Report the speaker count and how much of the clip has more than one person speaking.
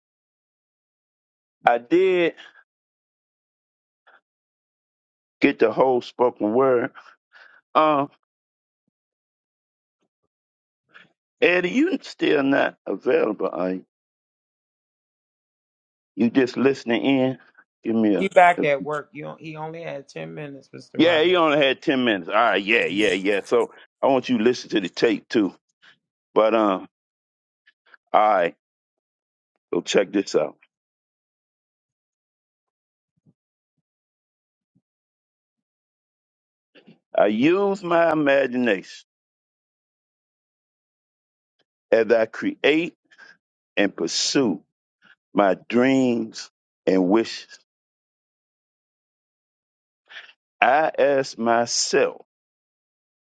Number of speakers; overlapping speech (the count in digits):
2, about 1%